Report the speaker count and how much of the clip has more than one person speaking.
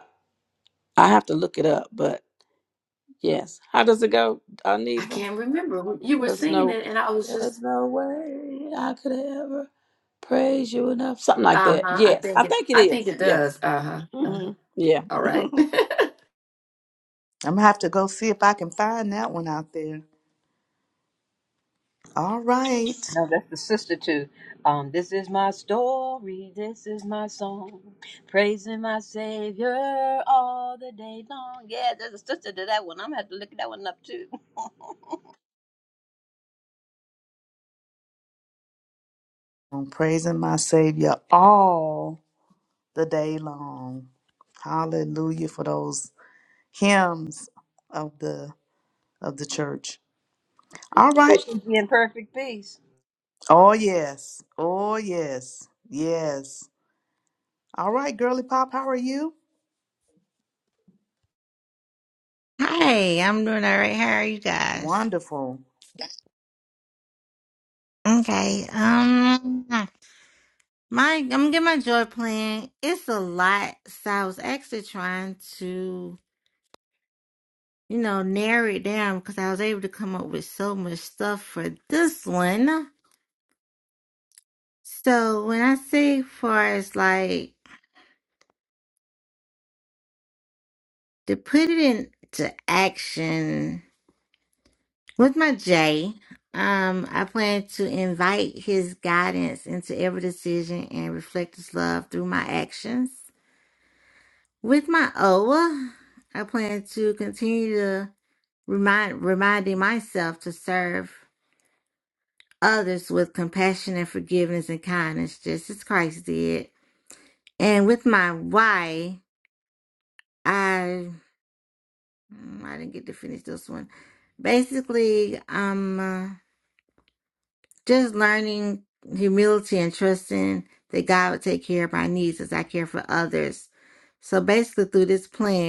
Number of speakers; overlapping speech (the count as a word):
five, about 3%